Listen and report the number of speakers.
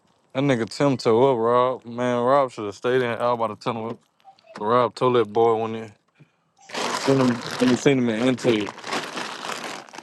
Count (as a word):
one